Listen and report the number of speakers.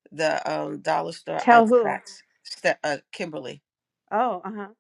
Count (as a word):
two